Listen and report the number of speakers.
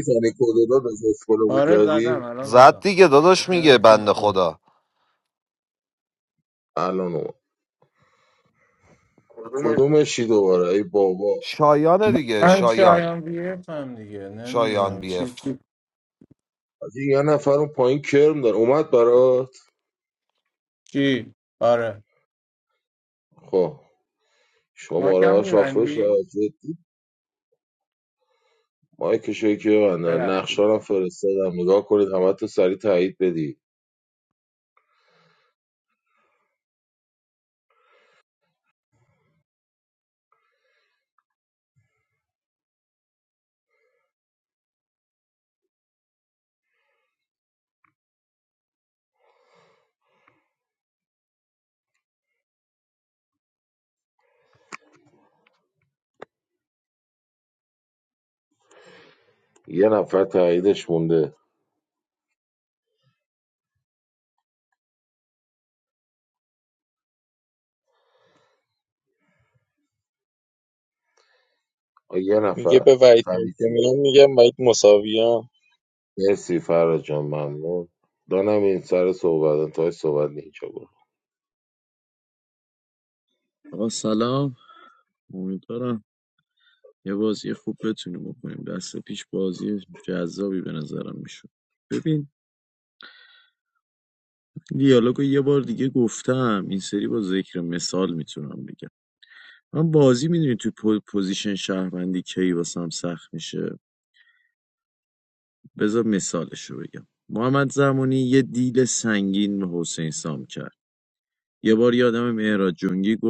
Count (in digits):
5